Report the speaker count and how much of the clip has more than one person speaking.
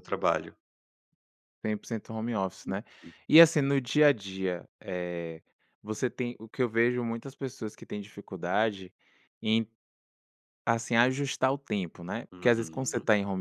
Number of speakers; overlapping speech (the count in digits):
2, about 5%